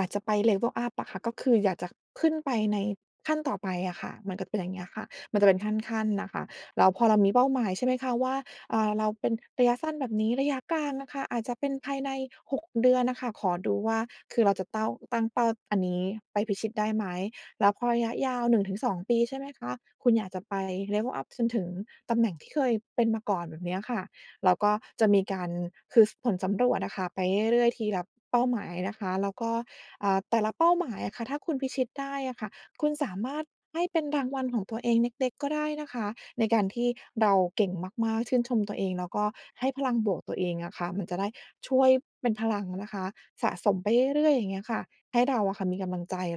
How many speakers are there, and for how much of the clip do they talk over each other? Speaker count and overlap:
one, no overlap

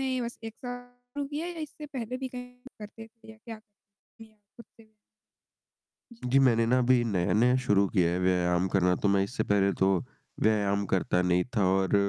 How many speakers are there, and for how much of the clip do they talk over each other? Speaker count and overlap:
two, no overlap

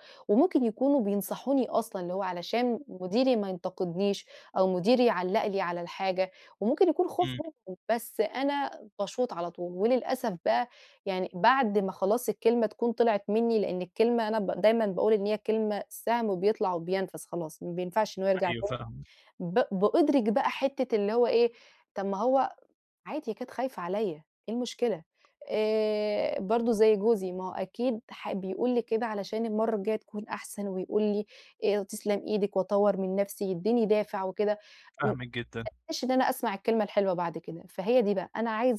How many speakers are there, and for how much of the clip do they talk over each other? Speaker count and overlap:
two, about 1%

